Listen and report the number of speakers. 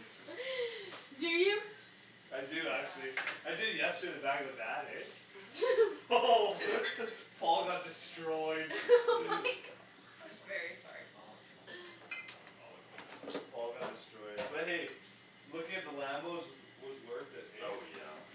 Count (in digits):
4